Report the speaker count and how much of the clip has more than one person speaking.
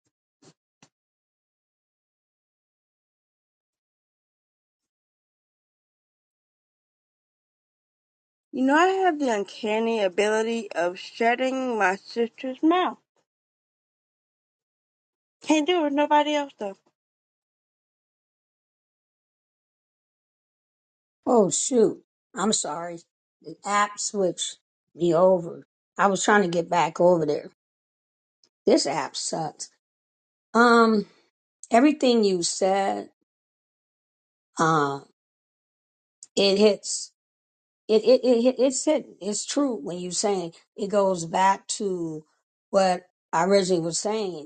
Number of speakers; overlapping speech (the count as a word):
two, no overlap